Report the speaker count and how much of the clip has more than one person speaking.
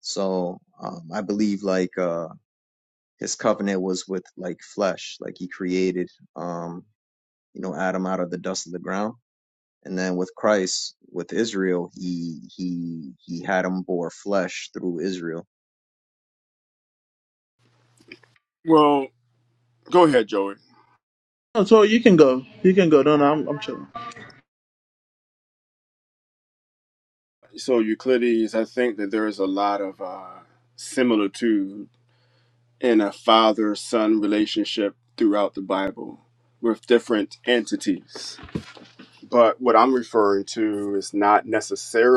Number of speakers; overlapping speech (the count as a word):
three, no overlap